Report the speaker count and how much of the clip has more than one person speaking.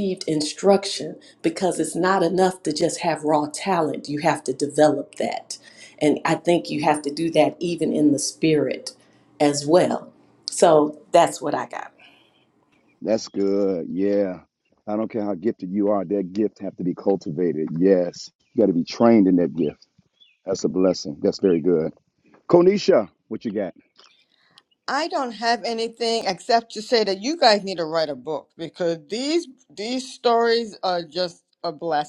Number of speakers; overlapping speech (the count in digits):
3, no overlap